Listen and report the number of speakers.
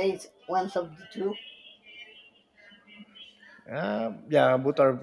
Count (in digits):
2